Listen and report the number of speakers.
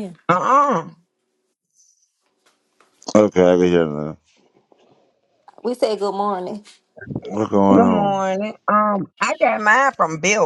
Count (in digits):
3